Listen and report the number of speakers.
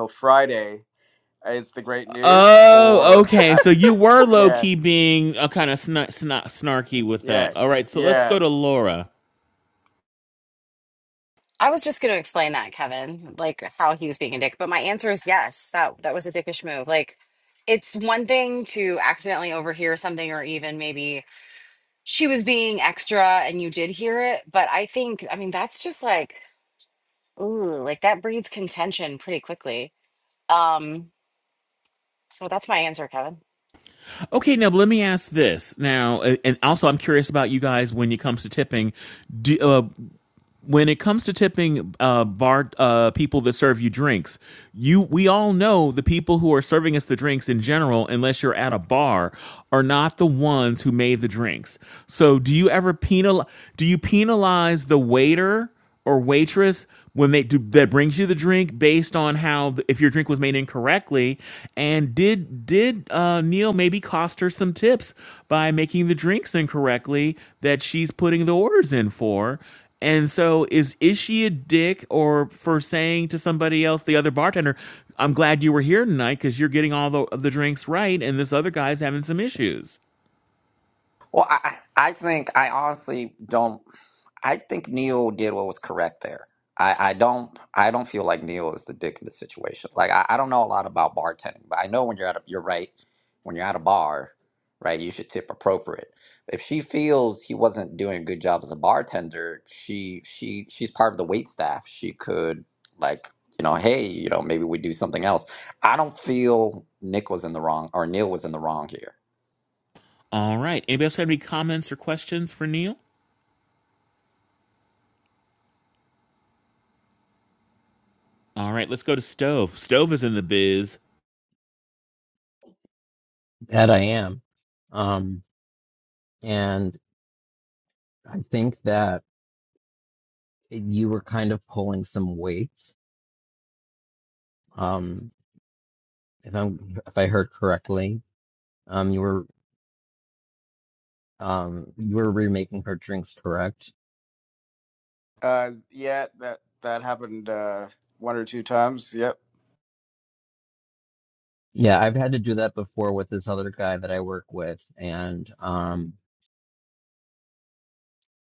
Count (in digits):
5